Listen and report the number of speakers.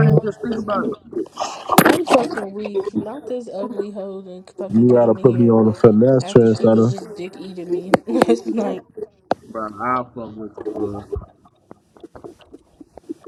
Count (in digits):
3